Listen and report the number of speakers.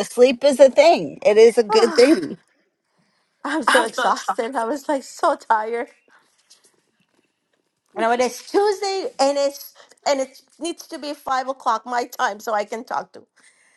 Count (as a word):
two